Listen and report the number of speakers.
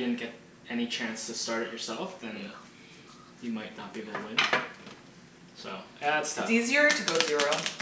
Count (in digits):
2